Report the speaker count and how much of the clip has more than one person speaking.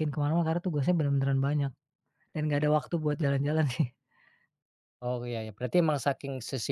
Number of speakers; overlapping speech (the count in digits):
2, about 5%